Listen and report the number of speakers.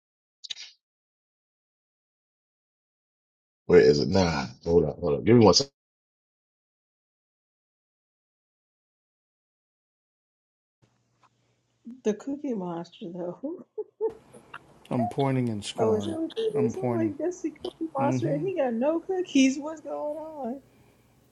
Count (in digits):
3